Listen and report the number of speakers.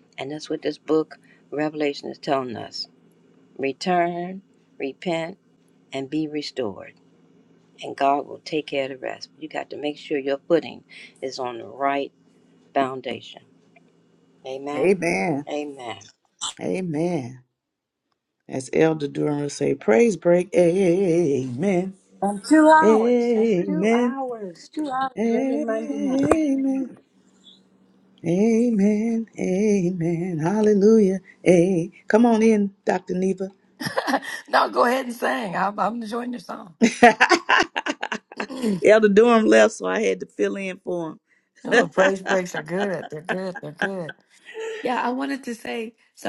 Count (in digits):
3